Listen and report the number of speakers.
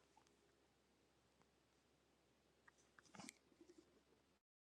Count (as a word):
zero